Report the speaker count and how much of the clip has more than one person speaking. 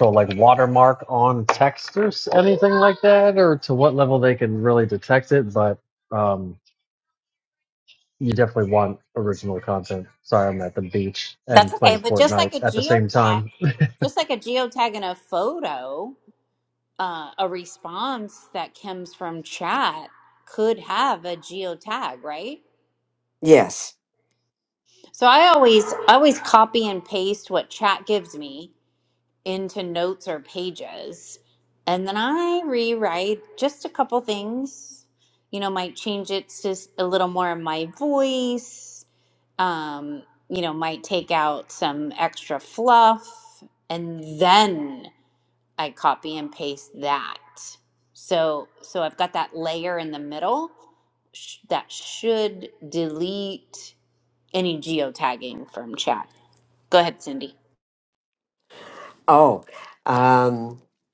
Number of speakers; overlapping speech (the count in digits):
3, about 3%